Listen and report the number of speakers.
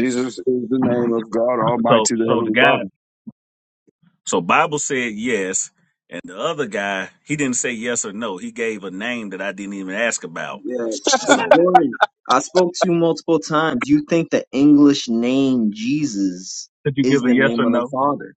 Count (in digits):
3